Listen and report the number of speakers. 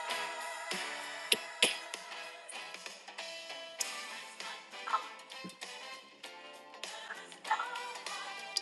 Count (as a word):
zero